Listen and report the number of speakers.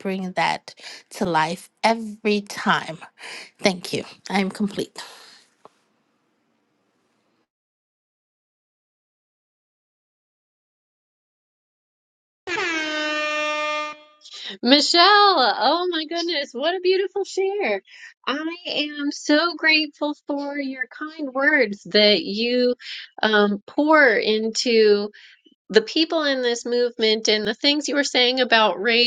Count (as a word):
two